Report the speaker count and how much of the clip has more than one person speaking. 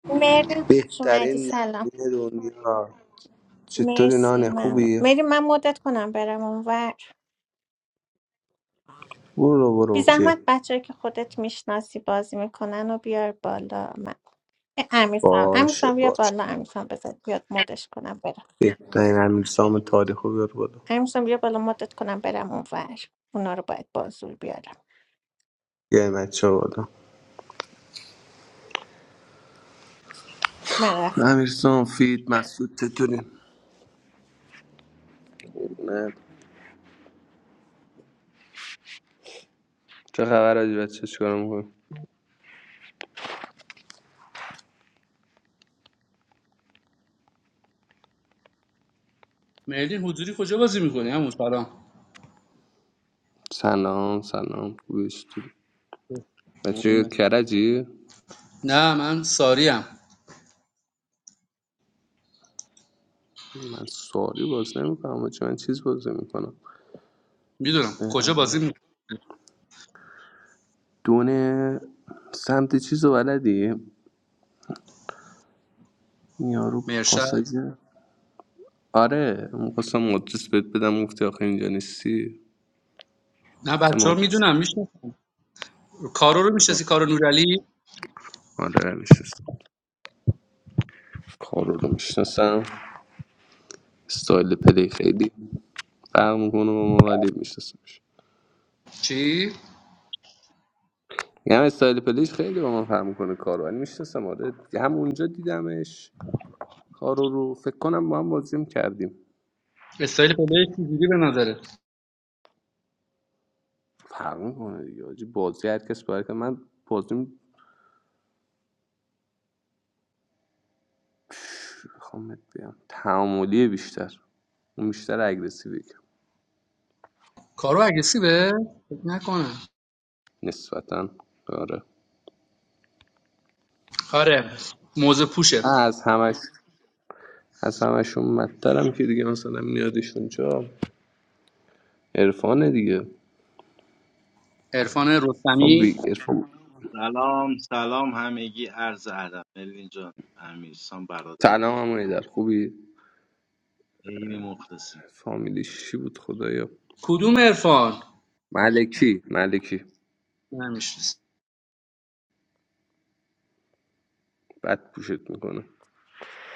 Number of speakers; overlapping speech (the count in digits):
4, about 4%